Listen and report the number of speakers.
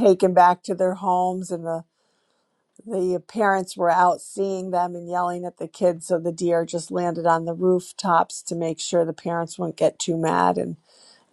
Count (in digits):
1